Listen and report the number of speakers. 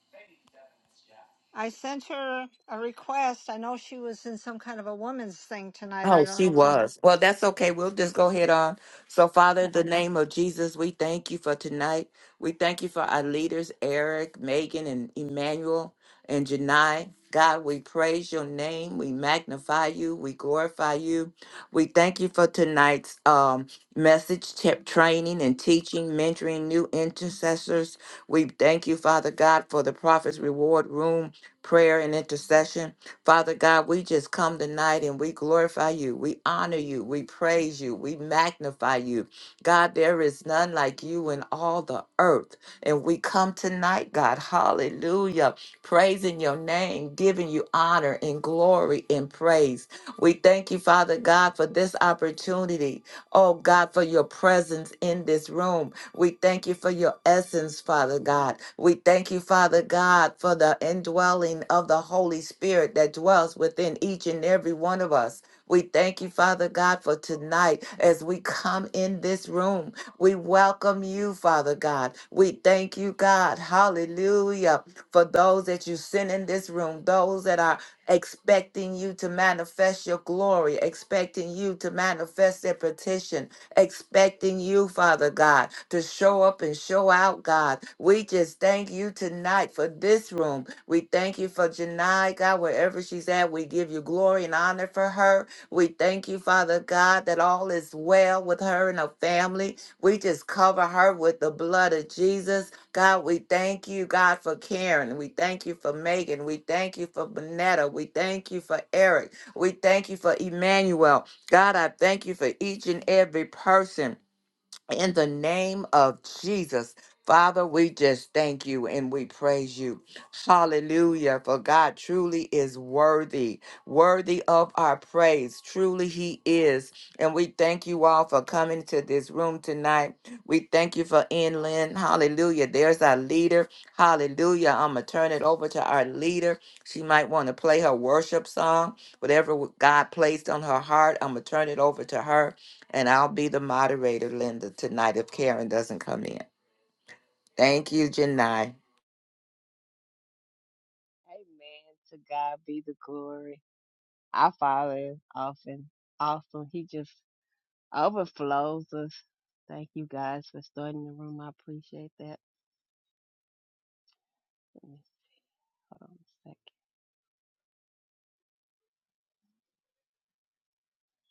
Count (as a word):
three